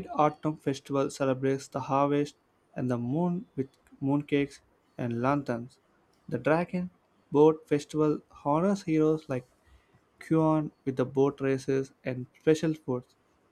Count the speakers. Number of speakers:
1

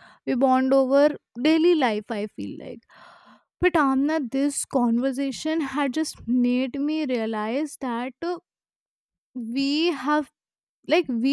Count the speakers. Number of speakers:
1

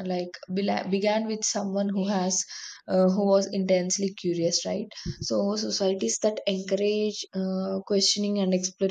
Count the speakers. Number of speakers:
1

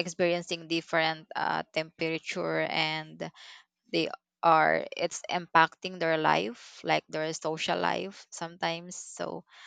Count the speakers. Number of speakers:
1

